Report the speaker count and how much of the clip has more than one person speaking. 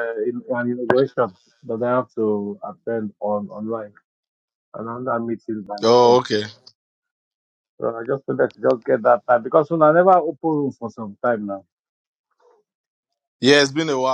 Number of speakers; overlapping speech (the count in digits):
2, about 2%